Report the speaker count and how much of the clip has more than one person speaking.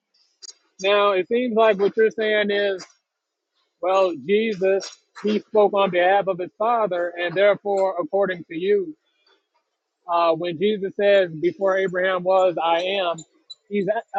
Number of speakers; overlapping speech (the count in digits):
1, no overlap